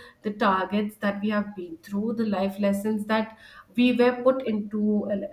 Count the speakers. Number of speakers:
1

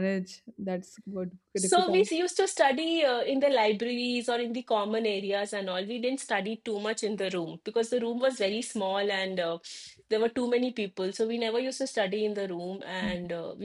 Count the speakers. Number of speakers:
2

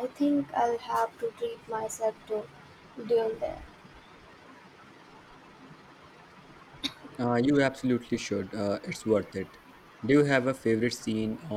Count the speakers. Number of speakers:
2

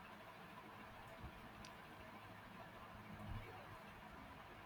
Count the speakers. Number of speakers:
0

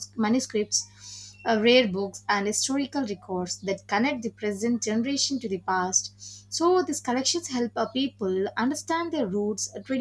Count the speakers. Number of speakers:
1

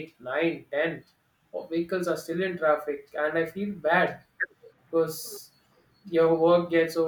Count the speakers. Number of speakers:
1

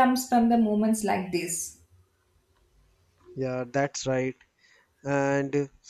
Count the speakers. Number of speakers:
2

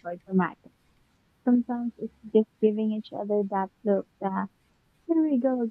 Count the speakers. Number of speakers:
1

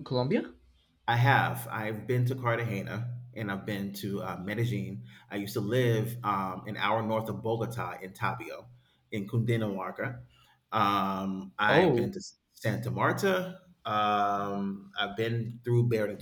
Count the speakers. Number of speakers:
2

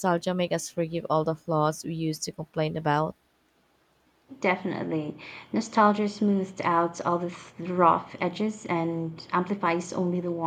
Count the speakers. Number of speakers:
2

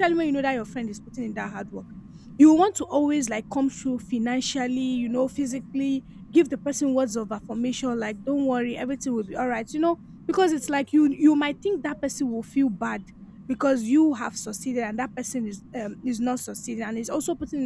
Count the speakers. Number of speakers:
1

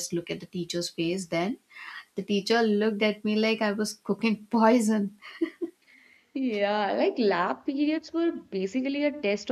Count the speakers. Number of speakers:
2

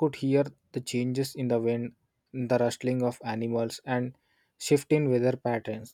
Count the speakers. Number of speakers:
1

